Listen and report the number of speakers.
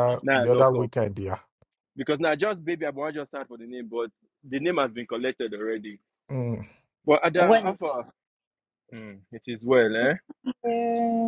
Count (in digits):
3